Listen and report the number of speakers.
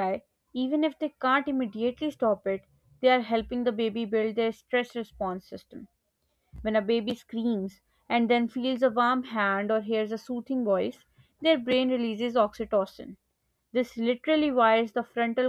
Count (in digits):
1